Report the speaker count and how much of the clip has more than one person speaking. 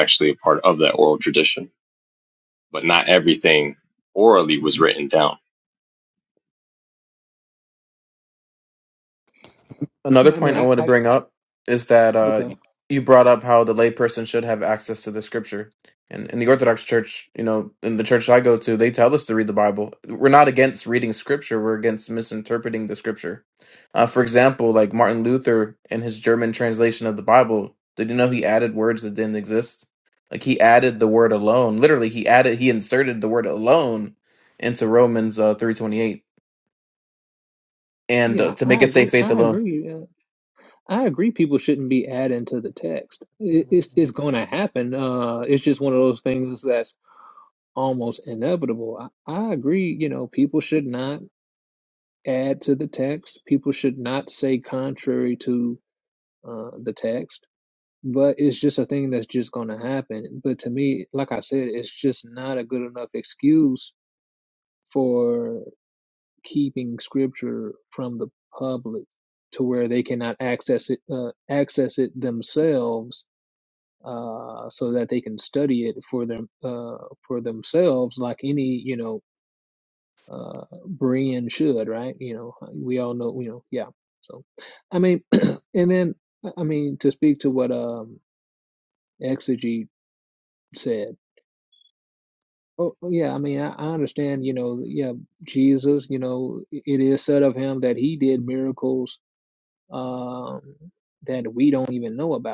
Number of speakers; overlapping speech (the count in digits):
3, about 2%